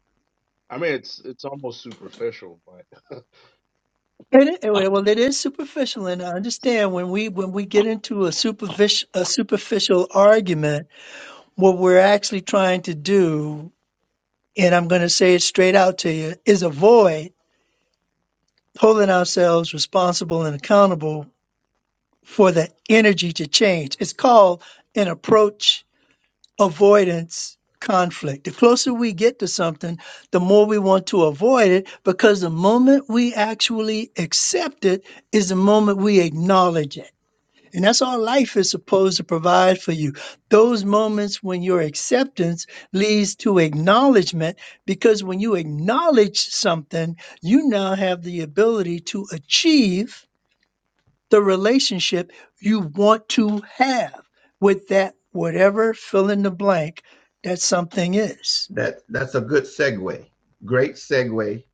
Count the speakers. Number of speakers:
three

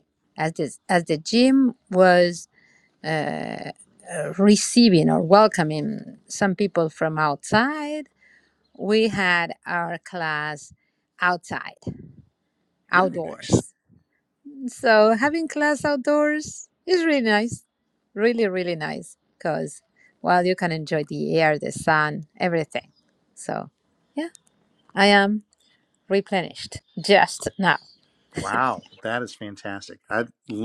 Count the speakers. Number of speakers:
two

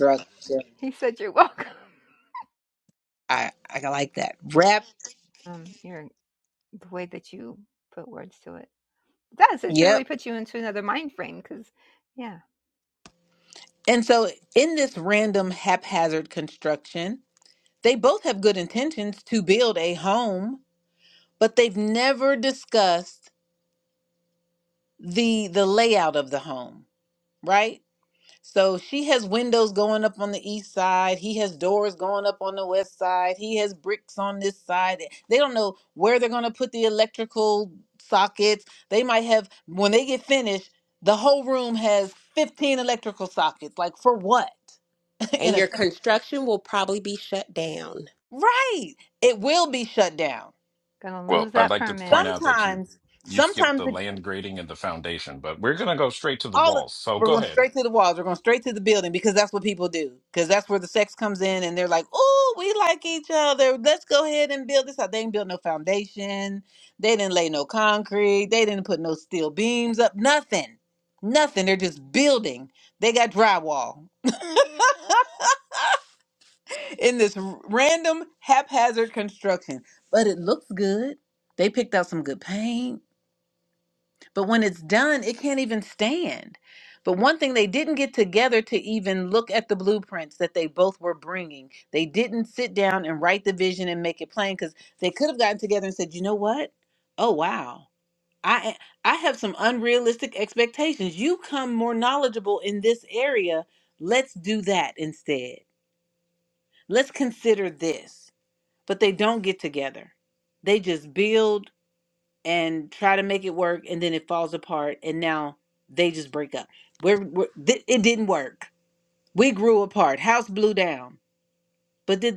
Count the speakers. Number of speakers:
four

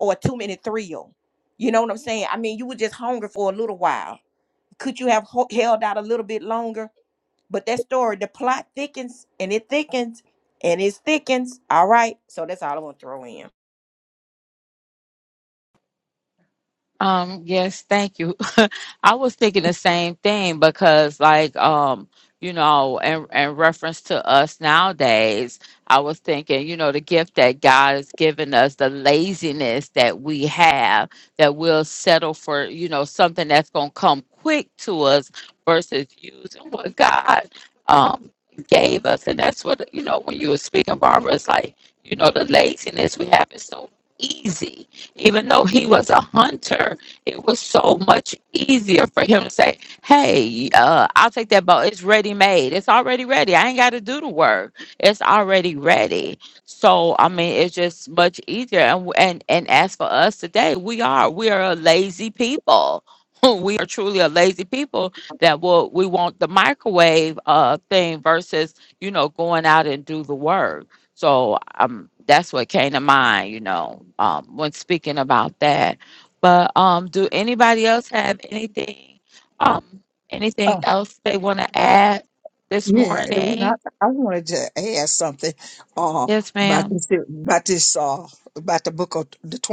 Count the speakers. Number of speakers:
three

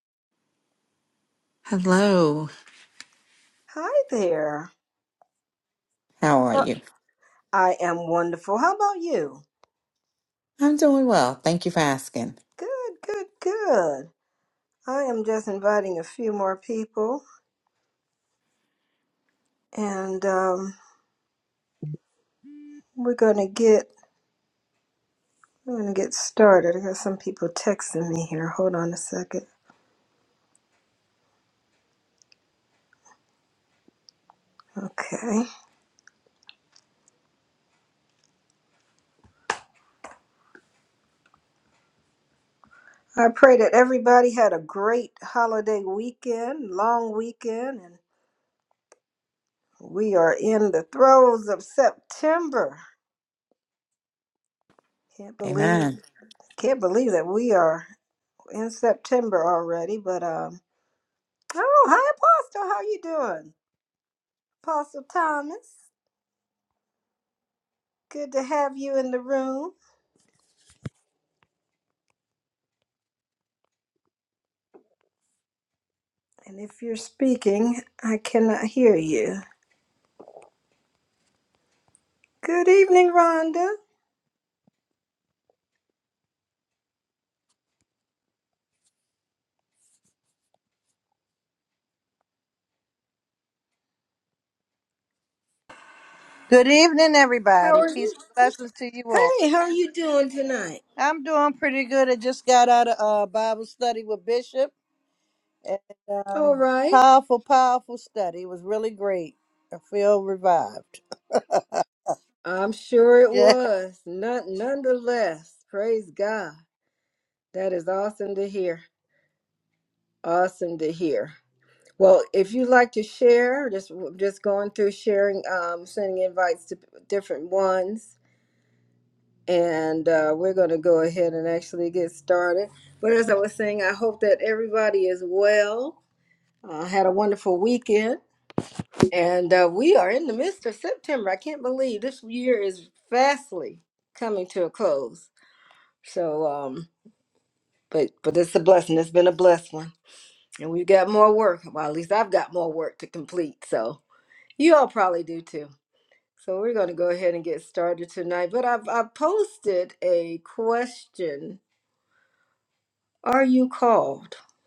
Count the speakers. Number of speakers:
three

